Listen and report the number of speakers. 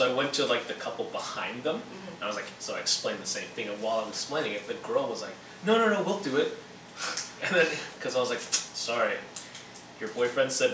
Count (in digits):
1